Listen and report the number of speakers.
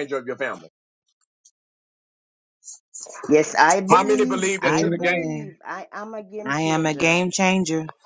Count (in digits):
3